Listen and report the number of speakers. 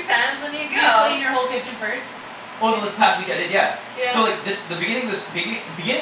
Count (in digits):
3